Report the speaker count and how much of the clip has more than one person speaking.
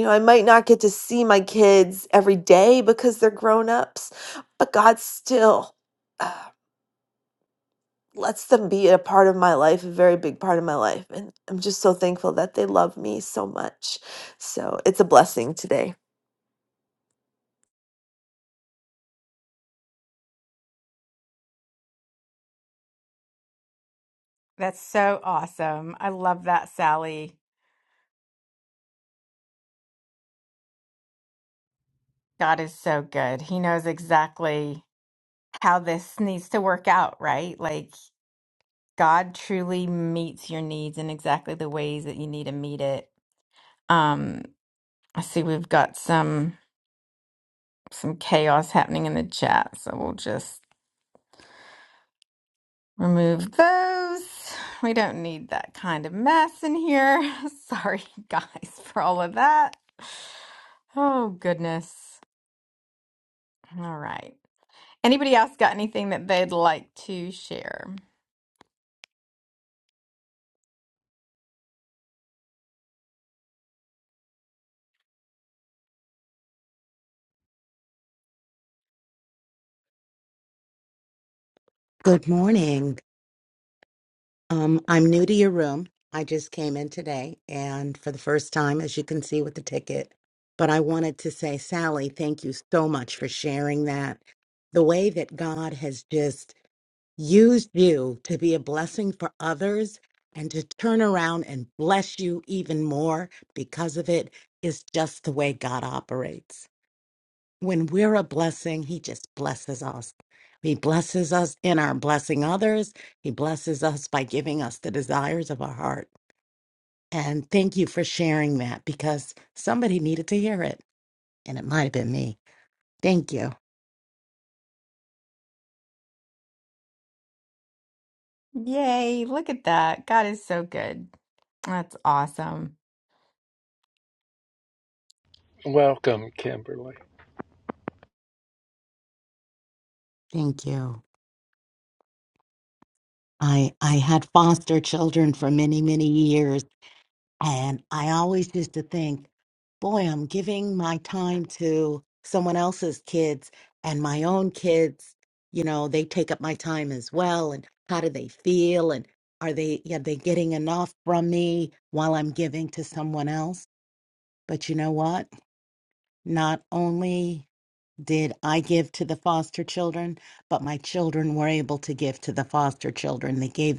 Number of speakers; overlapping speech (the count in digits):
4, no overlap